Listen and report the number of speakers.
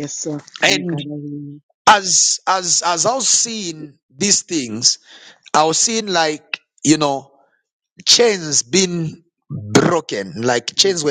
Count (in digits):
2